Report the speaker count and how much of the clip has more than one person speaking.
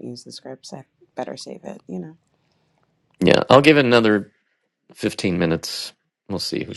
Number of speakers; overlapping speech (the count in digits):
2, no overlap